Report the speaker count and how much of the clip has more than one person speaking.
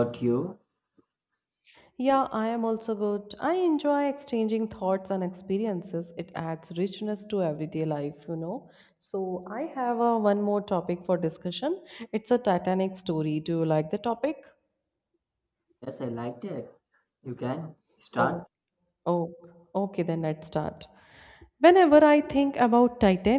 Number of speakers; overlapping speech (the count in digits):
2, about 1%